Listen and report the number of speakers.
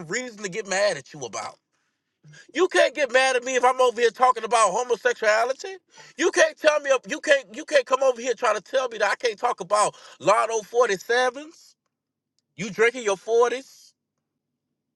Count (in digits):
1